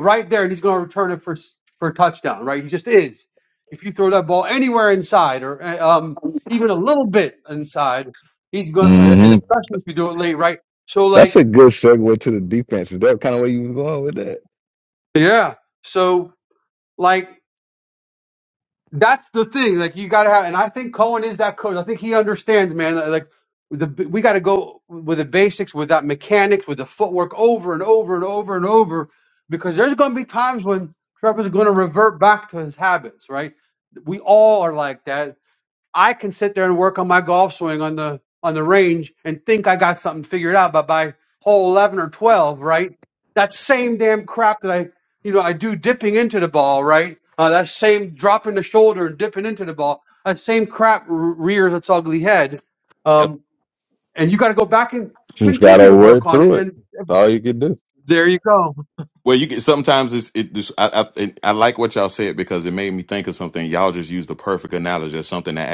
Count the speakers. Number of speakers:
three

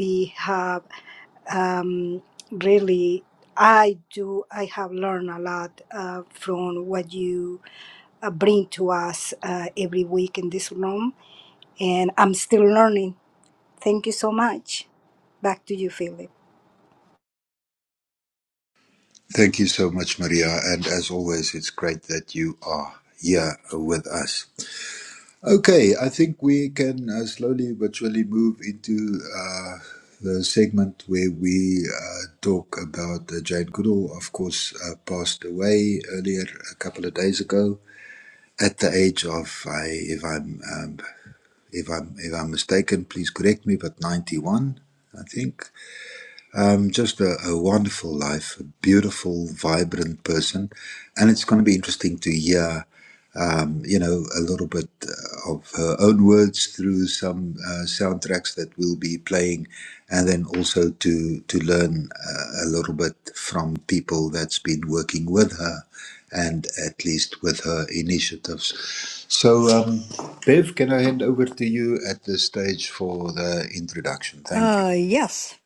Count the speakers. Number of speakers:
three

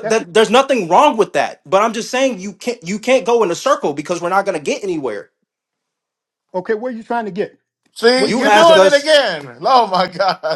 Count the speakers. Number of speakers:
three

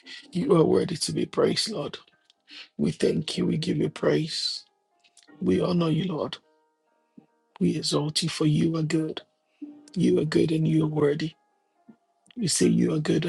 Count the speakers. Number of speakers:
one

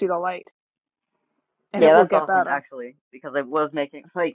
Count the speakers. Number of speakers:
two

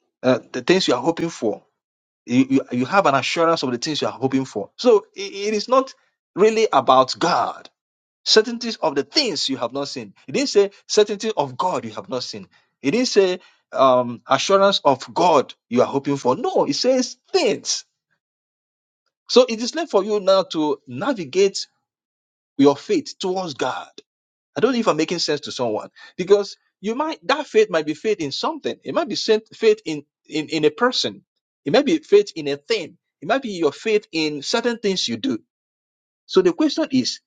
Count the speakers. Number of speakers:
one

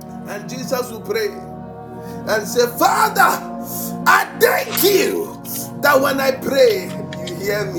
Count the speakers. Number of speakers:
one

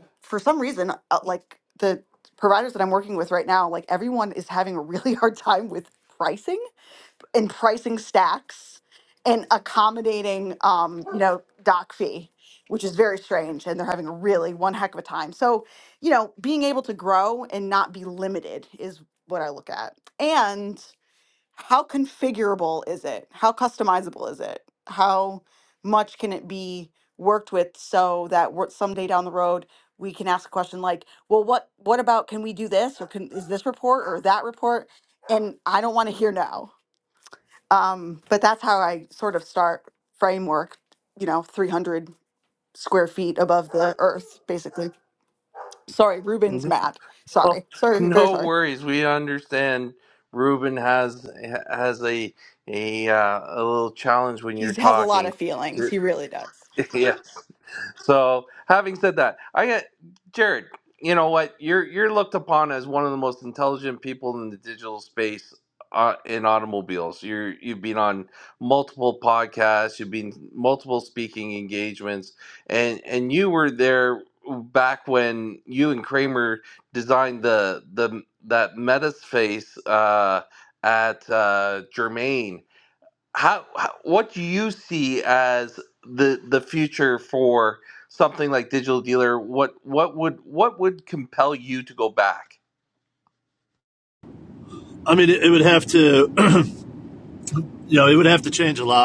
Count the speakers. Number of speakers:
three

